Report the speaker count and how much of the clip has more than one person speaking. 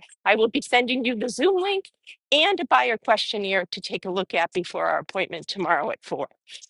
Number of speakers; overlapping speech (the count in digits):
1, no overlap